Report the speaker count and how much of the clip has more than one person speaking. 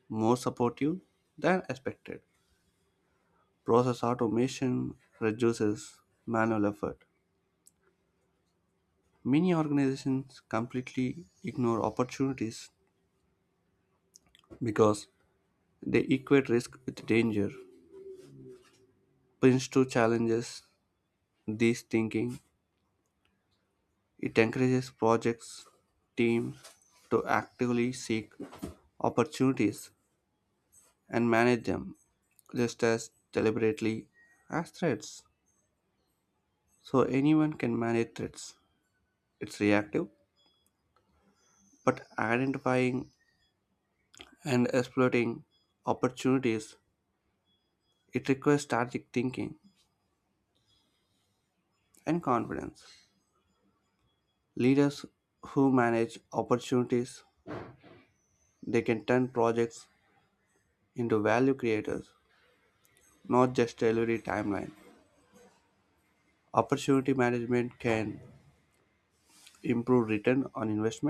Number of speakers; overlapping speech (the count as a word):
one, no overlap